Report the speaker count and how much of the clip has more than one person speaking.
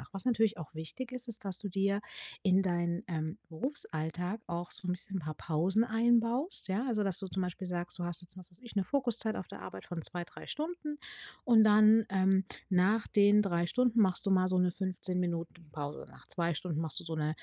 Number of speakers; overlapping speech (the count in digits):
1, no overlap